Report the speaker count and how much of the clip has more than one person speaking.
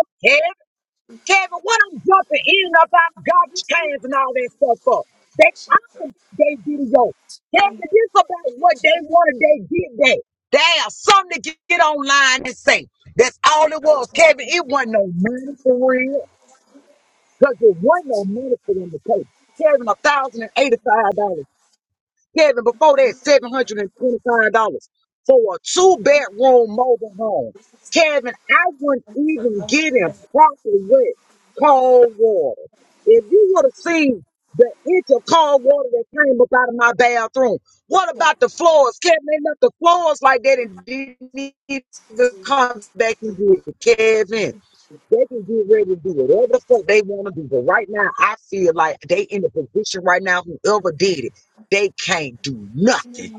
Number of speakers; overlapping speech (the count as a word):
one, no overlap